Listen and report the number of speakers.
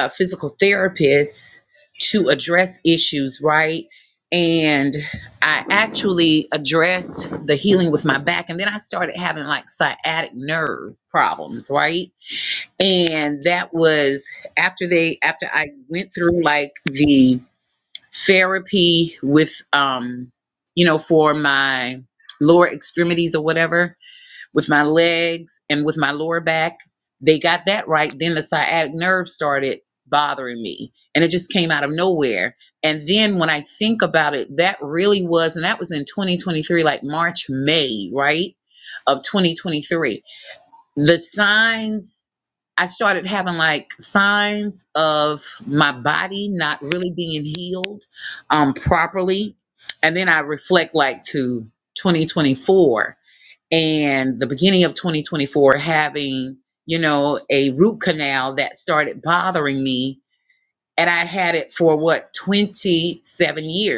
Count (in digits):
1